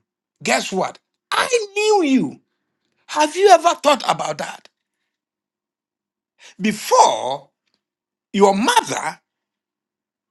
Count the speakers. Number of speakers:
1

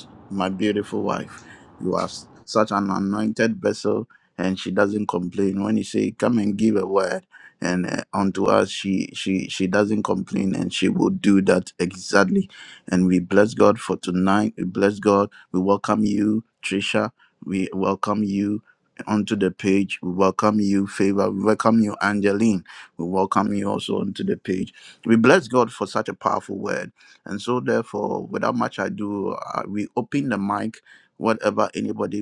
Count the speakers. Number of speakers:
1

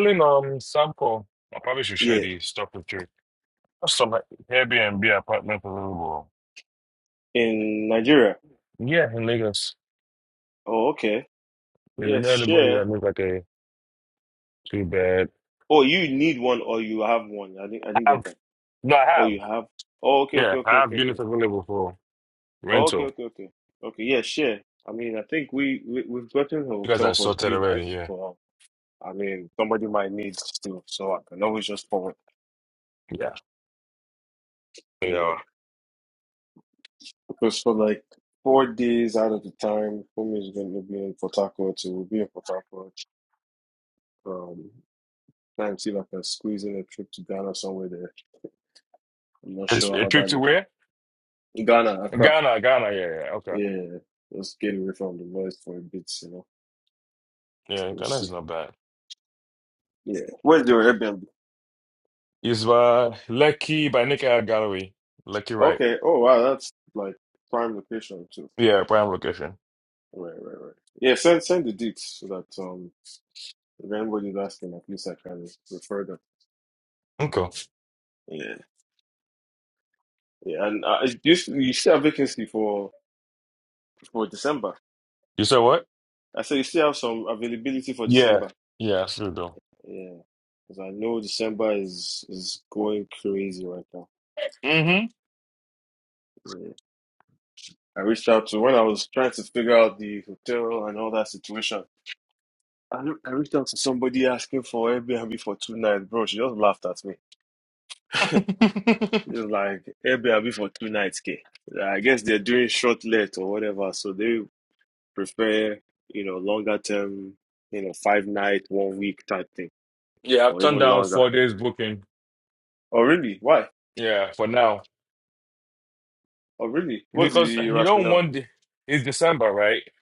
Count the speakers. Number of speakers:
2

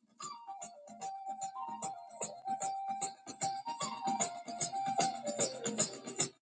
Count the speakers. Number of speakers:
0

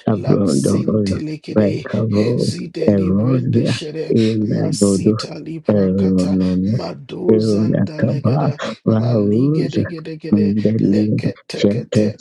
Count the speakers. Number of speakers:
2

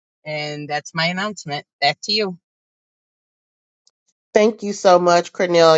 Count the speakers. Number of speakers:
2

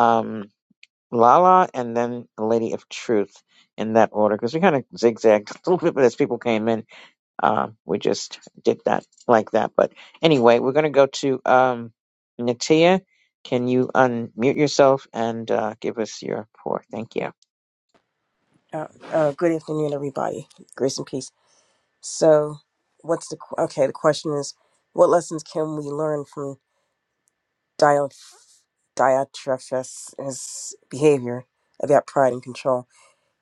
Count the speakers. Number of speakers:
2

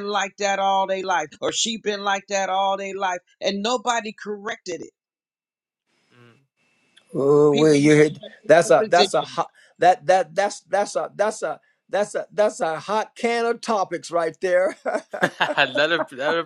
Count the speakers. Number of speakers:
3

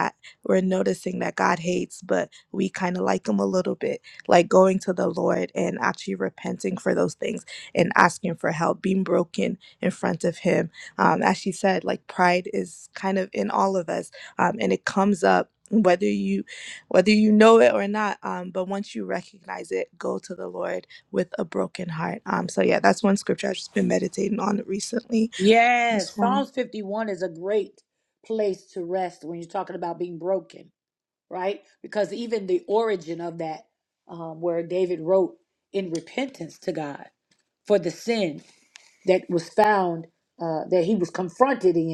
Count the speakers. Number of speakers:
2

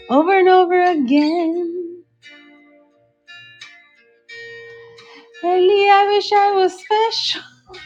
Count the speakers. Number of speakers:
1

